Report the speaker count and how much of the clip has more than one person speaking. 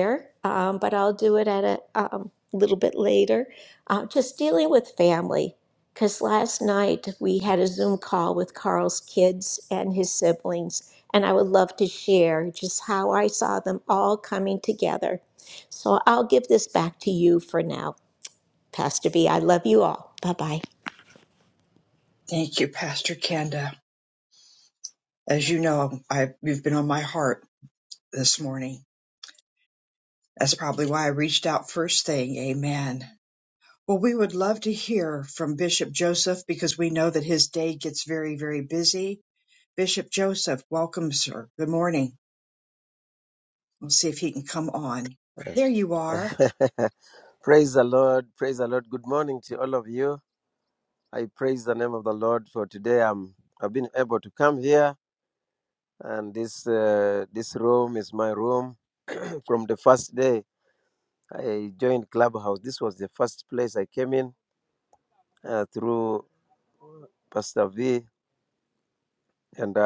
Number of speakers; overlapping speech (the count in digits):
3, no overlap